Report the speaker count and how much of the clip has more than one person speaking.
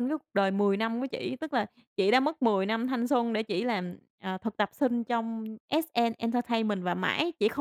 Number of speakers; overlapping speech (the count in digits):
1, no overlap